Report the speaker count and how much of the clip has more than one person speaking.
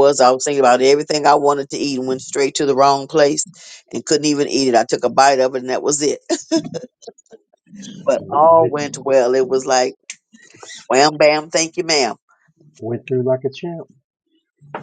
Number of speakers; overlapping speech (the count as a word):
two, about 4%